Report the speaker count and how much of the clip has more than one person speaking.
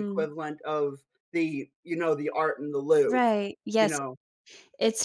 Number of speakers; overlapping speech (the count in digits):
2, about 12%